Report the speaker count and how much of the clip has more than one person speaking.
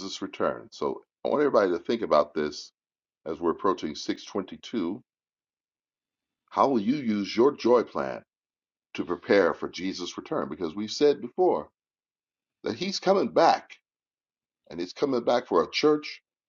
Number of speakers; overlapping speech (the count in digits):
1, no overlap